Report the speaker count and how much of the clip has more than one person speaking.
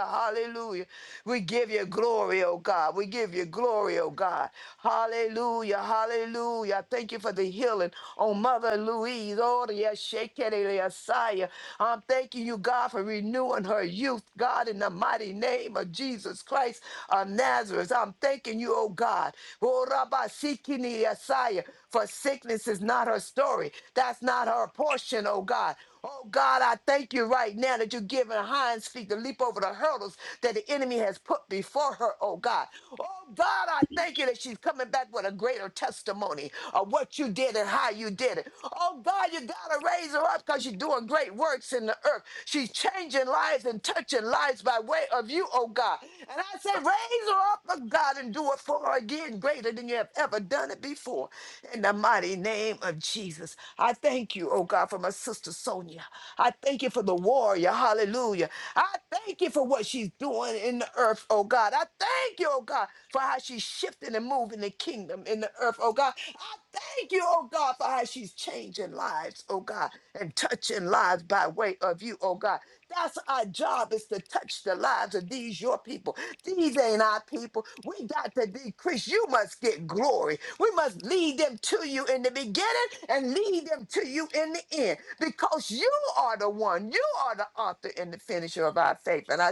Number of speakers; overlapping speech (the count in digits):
1, no overlap